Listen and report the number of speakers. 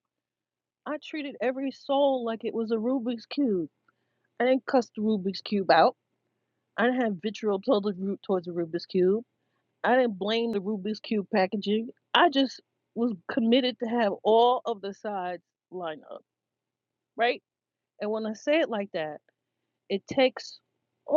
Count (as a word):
one